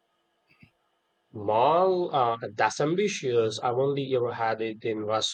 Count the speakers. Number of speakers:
one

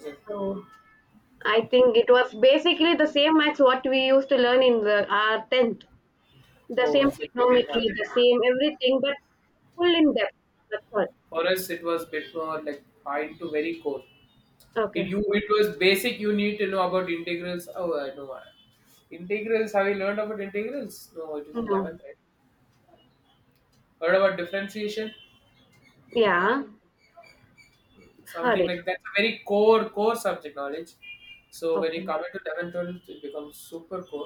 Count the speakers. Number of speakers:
two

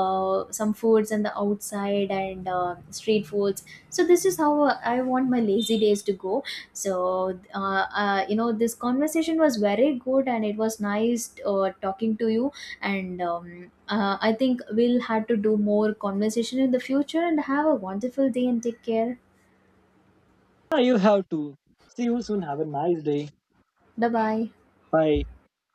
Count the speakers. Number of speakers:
two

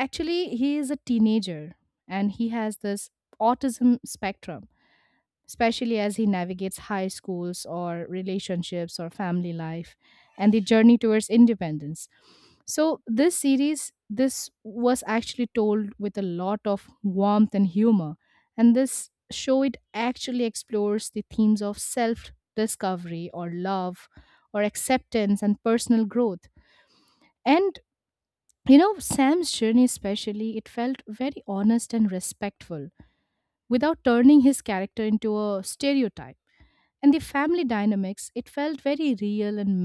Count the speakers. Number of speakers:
one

